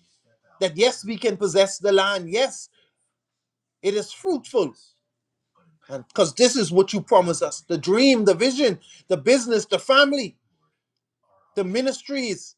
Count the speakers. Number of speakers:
one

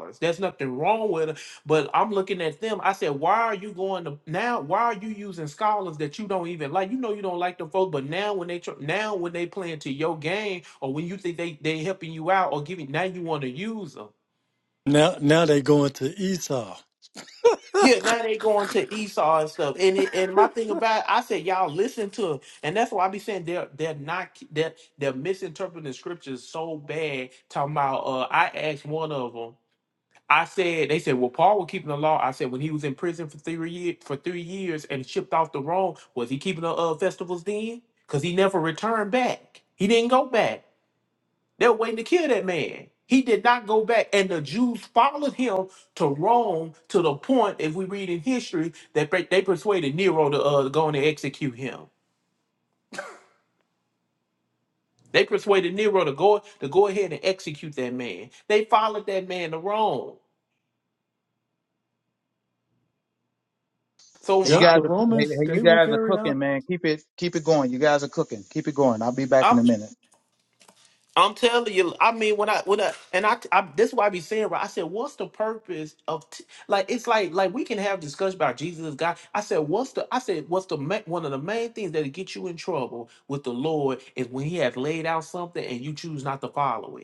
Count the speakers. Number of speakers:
three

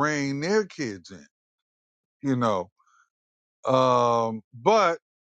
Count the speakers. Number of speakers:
one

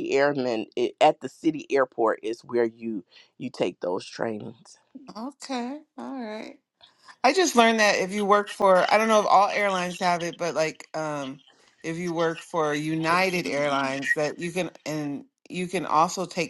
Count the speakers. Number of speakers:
two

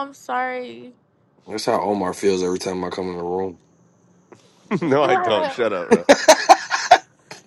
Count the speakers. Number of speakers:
three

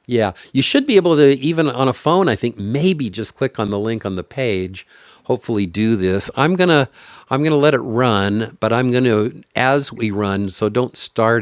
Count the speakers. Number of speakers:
one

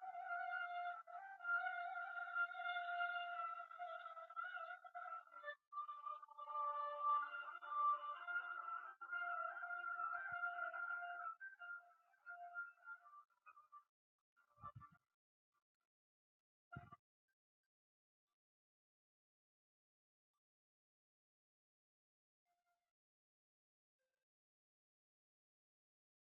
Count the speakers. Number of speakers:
zero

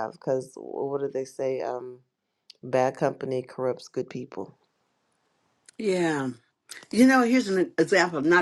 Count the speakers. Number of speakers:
two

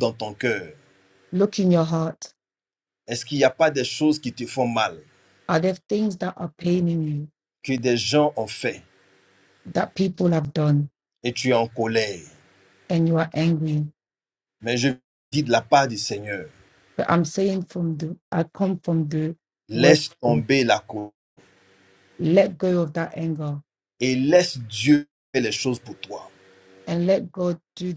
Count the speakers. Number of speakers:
two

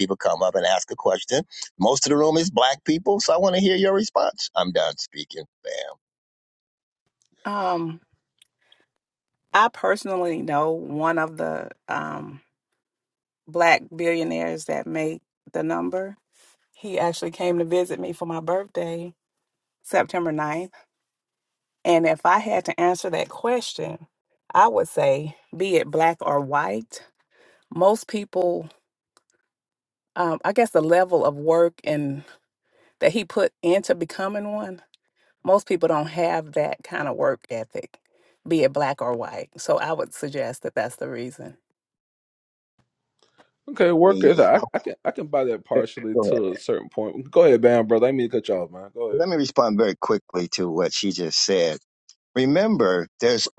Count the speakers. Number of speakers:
three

